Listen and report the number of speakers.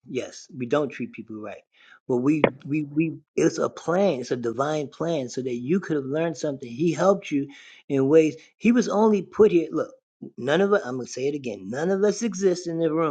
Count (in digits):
1